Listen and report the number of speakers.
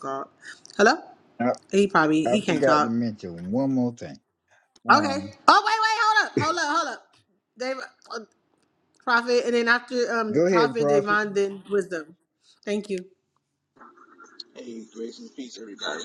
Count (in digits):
3